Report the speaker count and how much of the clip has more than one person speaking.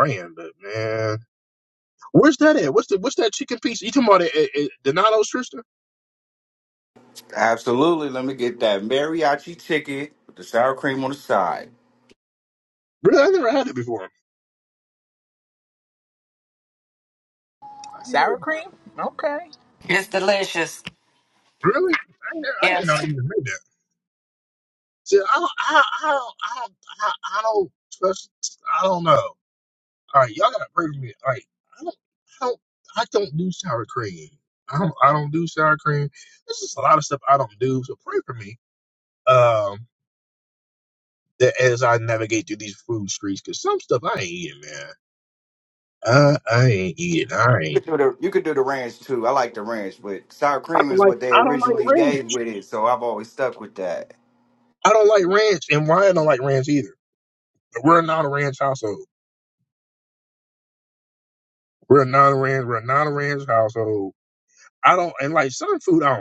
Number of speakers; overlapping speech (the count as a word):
four, about 4%